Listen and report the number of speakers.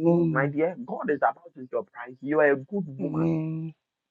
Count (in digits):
2